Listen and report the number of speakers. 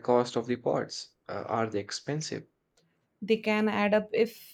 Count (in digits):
2